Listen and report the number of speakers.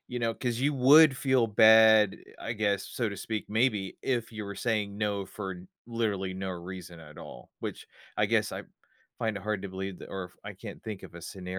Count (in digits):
1